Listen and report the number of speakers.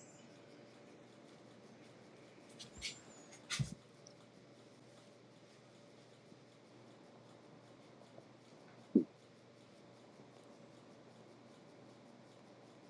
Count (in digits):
0